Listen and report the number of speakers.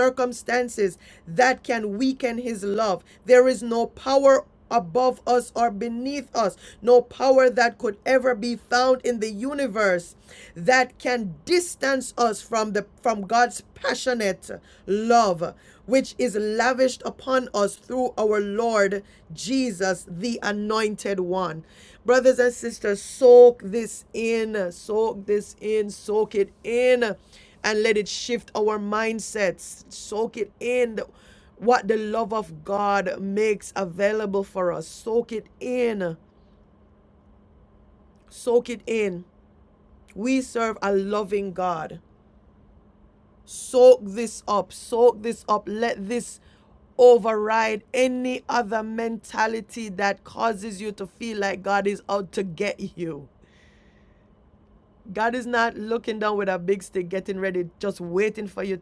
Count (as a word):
one